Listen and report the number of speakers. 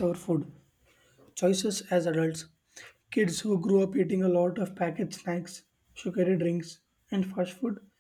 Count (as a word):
one